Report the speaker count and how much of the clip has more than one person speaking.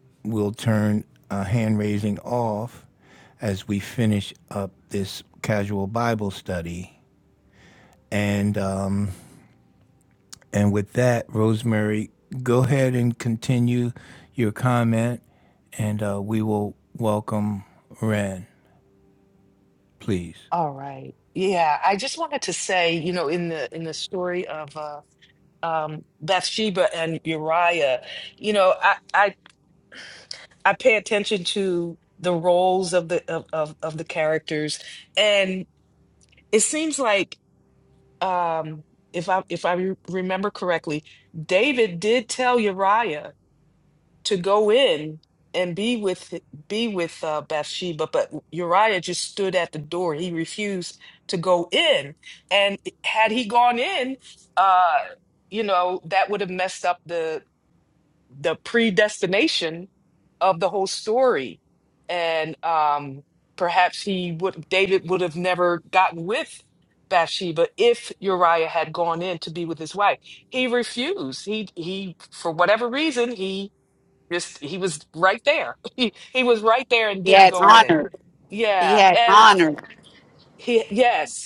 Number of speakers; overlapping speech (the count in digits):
3, about 2%